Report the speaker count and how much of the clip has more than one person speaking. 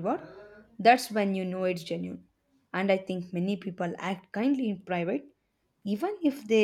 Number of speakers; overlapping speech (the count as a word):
one, no overlap